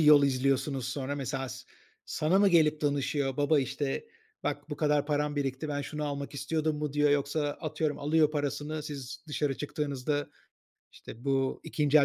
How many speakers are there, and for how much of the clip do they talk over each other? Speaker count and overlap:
1, no overlap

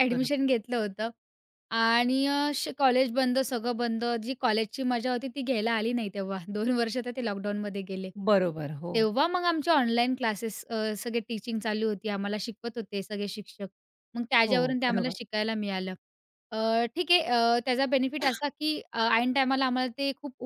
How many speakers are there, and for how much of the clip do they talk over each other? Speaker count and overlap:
2, about 5%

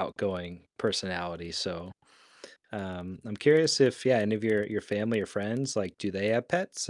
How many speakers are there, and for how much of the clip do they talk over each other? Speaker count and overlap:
1, no overlap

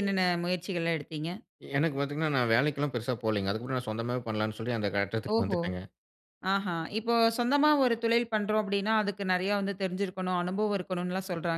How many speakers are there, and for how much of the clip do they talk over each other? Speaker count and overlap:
2, about 3%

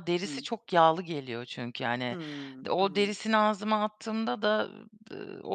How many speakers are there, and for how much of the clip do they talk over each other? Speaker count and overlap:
2, about 13%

